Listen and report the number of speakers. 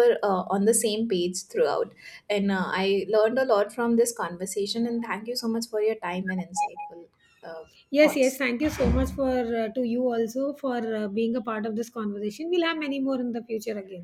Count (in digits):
2